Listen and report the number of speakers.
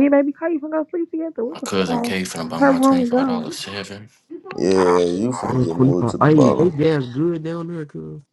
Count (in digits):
4